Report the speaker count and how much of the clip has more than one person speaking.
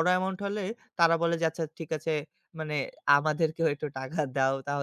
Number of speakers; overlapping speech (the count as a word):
one, no overlap